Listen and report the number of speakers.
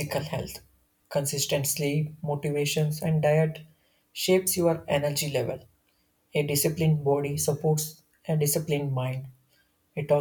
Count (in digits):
1